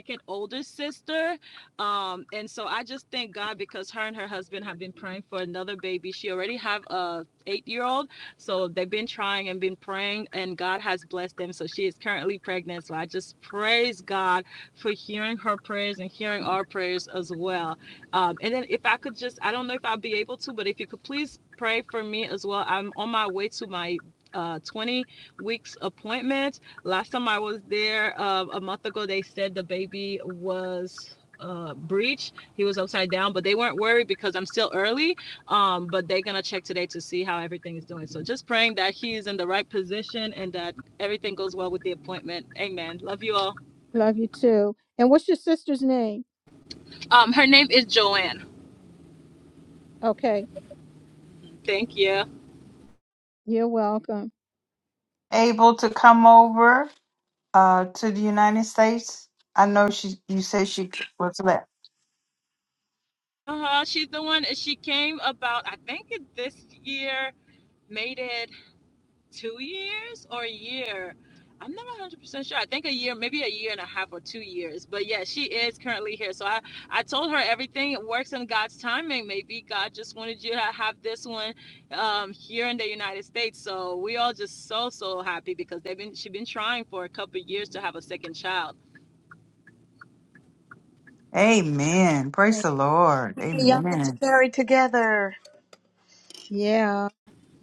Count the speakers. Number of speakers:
4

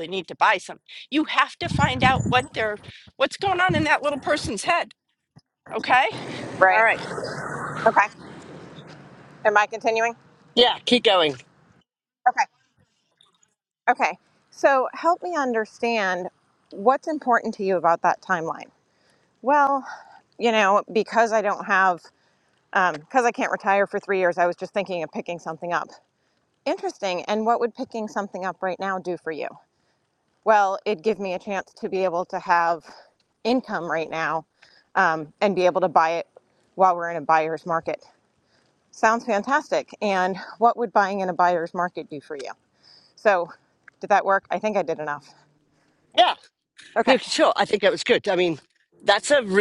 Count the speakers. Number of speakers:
3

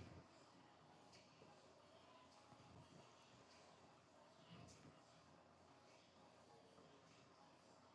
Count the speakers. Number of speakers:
0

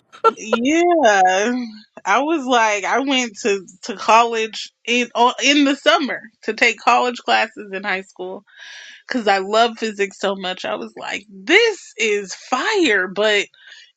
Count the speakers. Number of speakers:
1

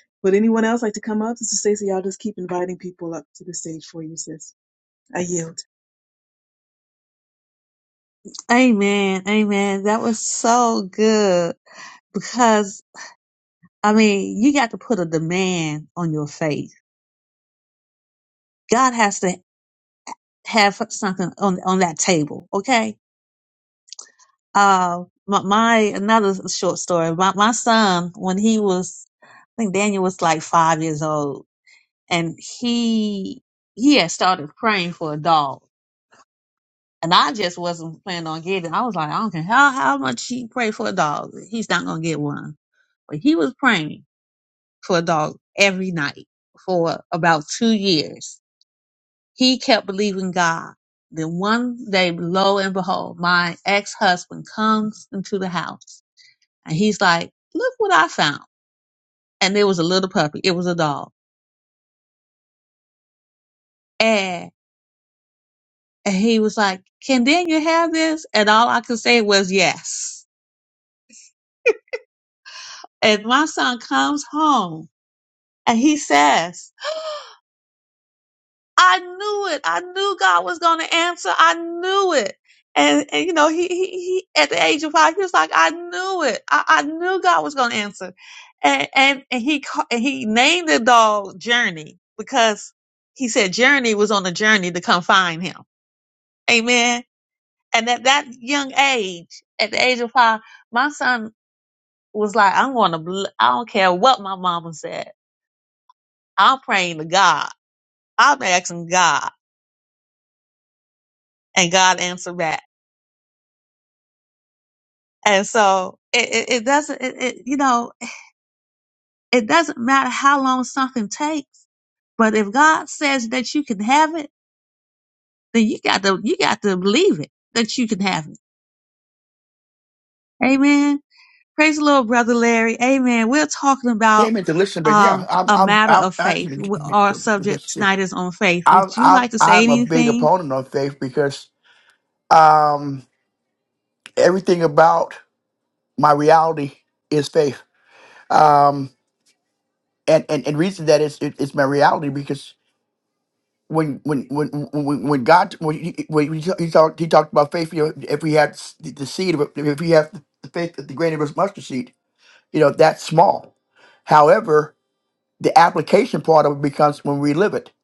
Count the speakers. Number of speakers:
3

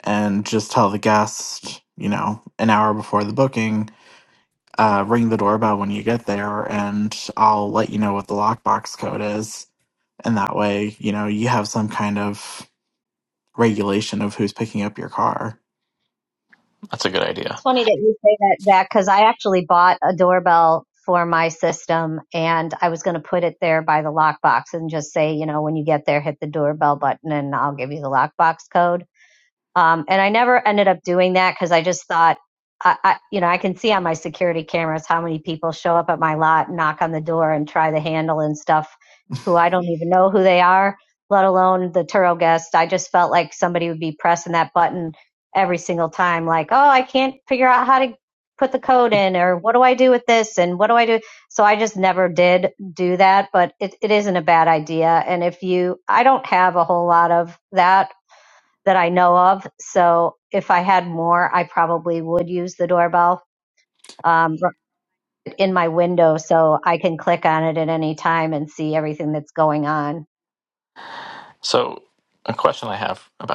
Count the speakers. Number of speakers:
3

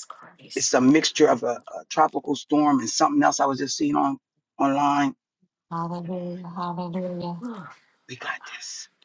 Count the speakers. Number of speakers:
3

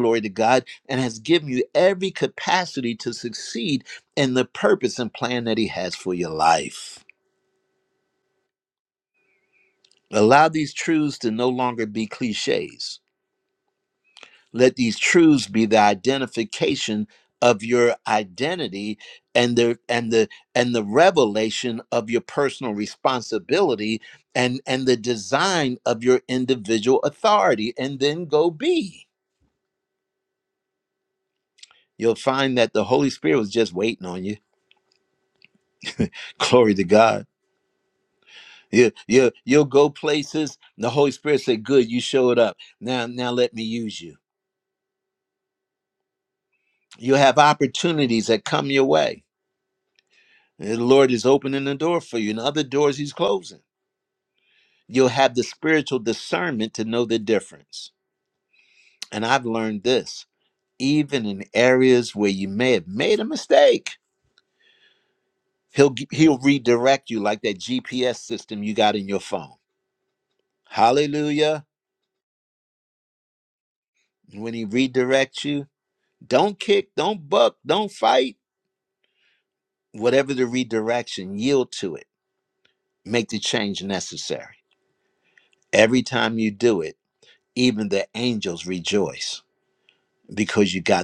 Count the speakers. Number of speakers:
1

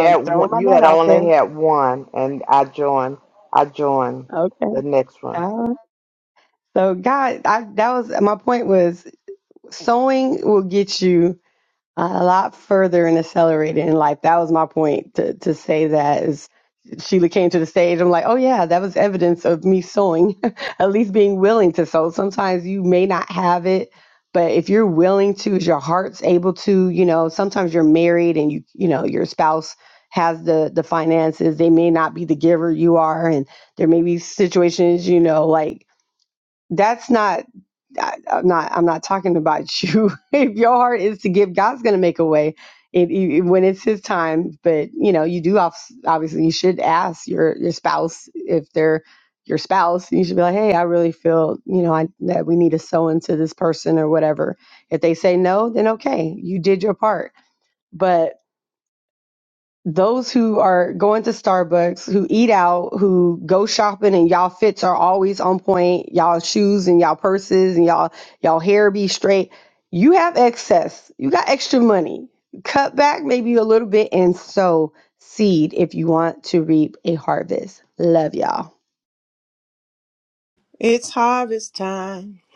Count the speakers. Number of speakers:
3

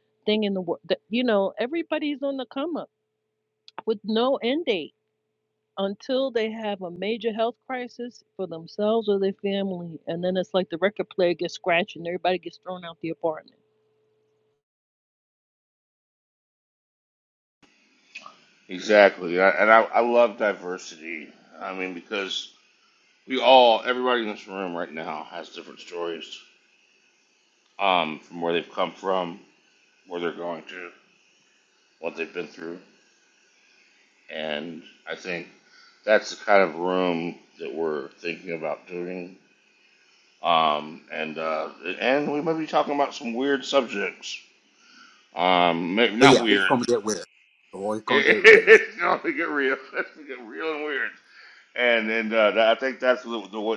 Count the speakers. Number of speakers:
3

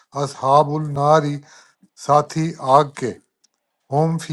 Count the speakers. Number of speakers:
1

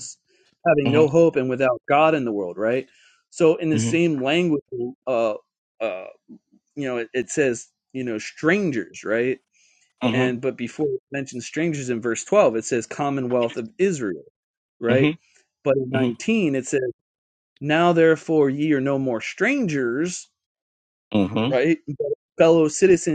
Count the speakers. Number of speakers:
2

